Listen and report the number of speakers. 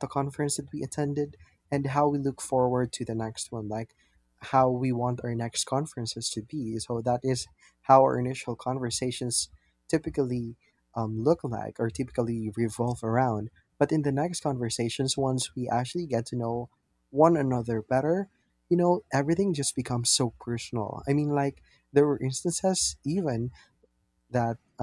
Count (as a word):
one